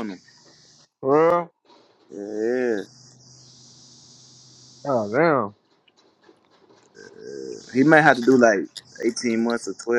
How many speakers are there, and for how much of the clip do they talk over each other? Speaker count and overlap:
2, no overlap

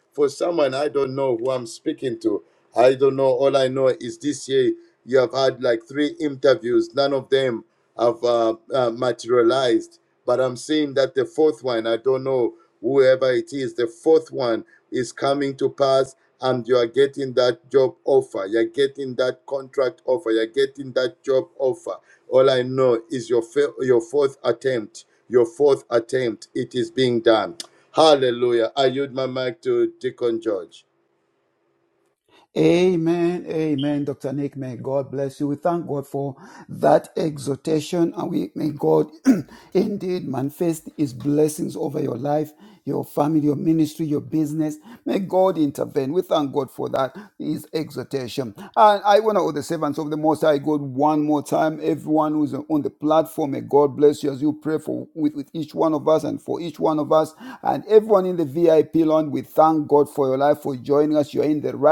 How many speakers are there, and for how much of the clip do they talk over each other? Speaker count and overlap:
2, no overlap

